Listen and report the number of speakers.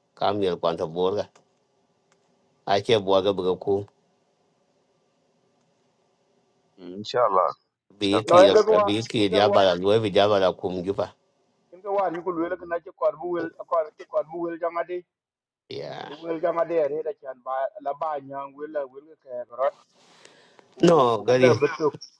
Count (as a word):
three